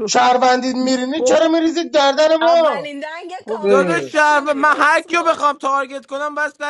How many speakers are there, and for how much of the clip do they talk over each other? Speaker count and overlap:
3, about 38%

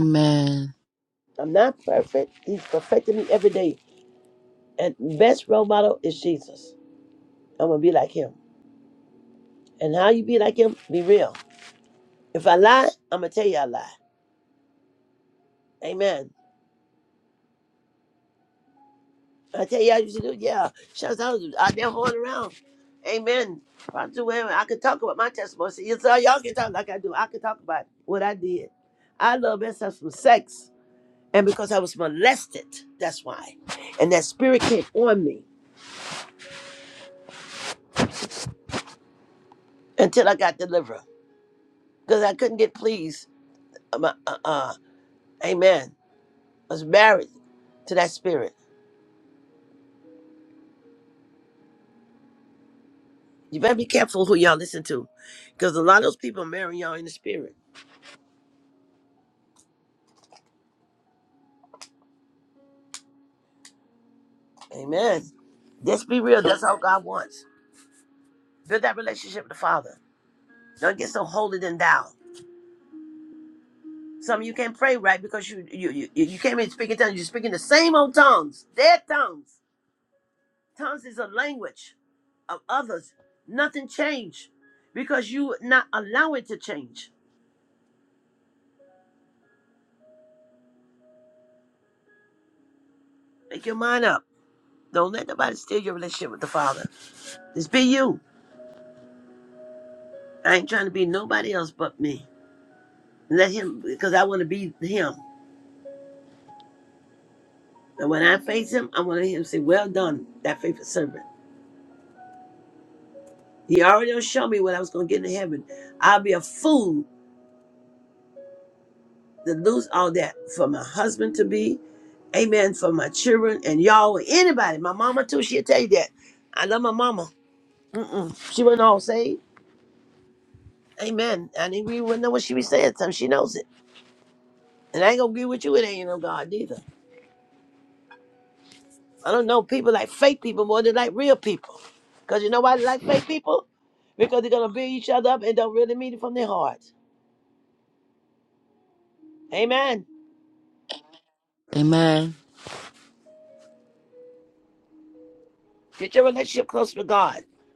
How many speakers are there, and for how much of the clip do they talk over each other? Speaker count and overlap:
2, no overlap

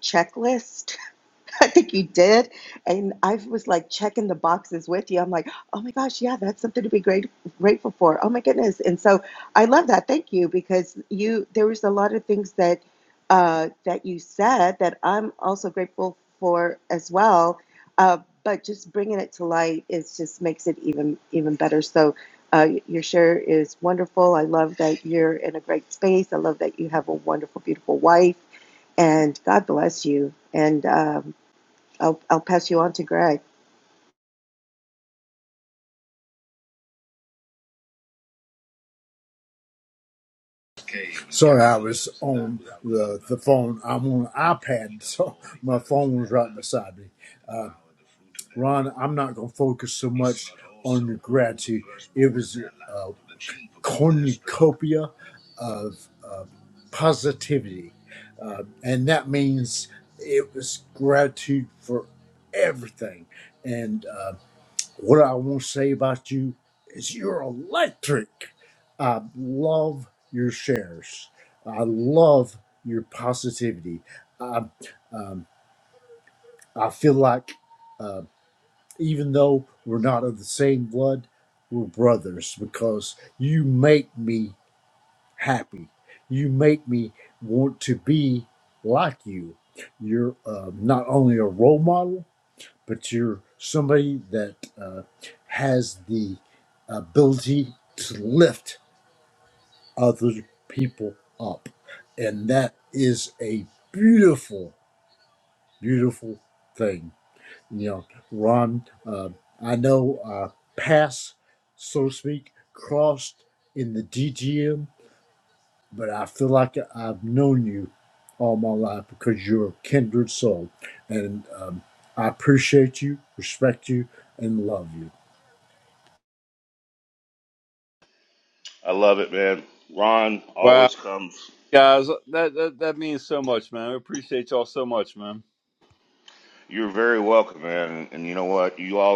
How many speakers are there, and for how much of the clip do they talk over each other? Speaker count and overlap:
4, under 1%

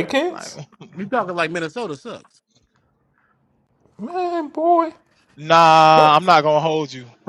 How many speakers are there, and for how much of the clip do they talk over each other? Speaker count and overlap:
3, about 1%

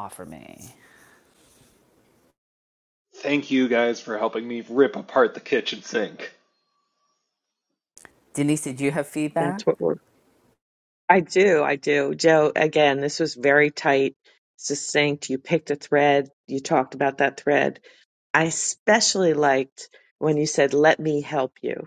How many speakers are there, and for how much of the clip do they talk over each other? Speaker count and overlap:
3, about 1%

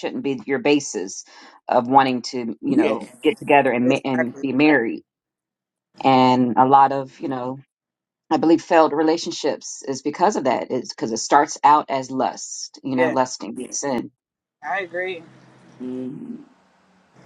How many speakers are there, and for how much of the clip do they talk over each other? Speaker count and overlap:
3, about 6%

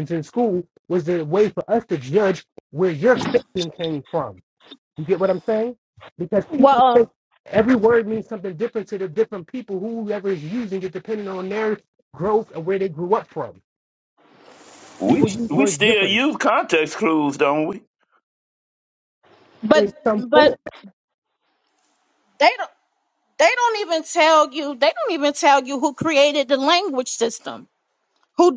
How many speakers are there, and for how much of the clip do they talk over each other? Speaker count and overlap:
3, about 7%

